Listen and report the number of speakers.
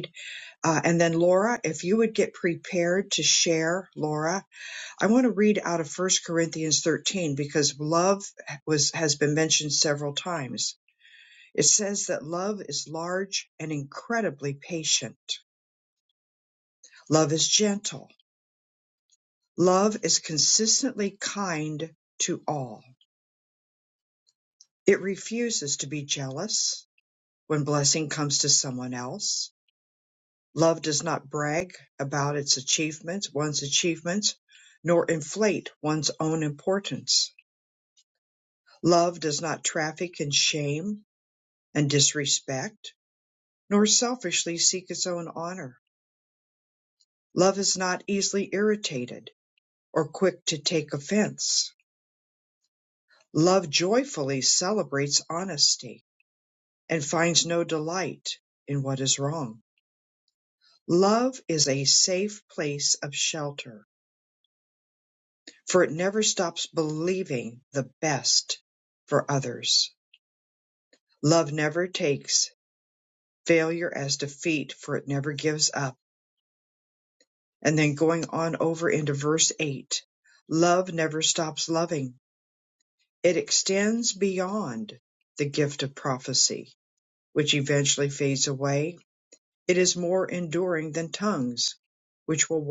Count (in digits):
1